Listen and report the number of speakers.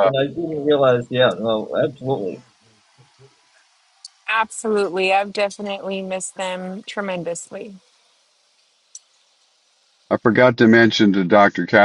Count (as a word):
three